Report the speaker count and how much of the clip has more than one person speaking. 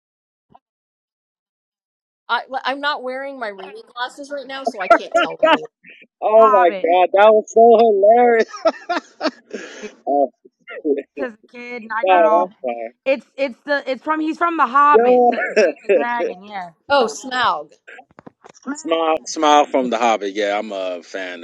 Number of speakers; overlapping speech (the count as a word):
three, about 7%